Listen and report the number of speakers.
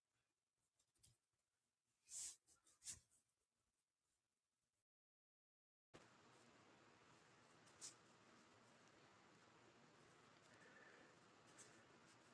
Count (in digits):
0